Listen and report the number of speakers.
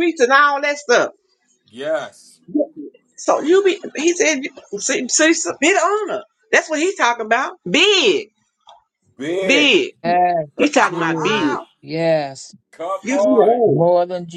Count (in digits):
3